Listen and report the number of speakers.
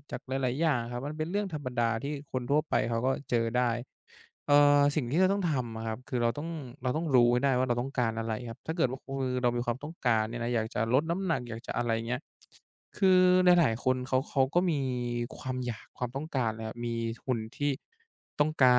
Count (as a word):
one